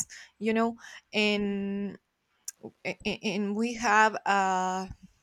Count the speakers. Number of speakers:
1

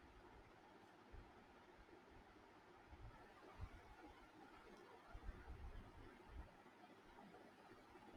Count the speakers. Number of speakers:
0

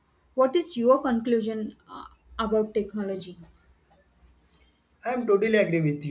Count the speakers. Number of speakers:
2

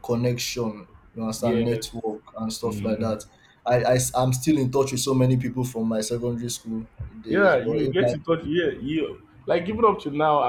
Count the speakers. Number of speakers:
2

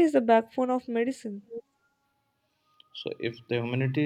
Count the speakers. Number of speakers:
2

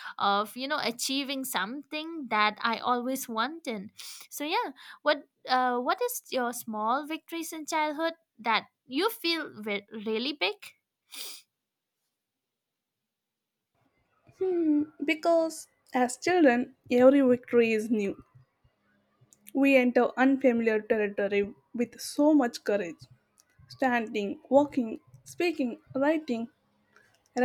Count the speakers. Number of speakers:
2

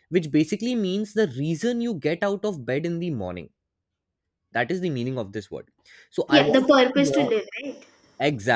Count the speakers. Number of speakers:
2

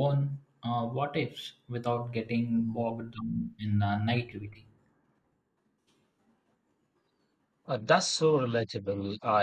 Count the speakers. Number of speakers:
2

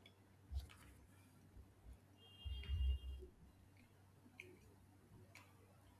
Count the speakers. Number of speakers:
0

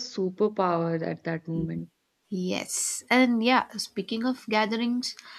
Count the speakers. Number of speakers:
2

